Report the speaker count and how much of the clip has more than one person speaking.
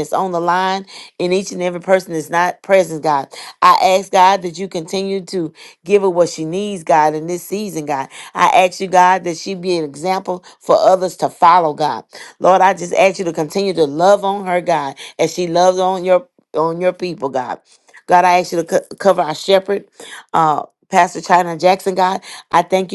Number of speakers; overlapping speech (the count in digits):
1, no overlap